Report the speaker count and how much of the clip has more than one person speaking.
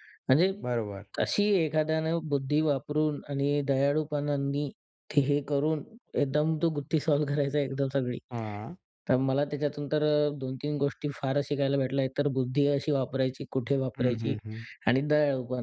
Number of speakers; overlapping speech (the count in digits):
2, about 2%